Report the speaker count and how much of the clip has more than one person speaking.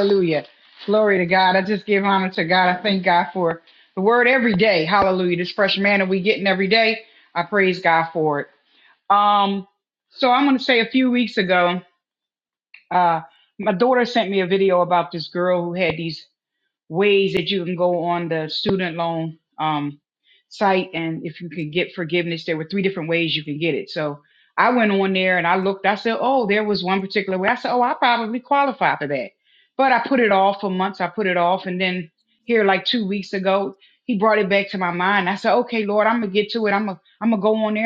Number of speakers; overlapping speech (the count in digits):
1, no overlap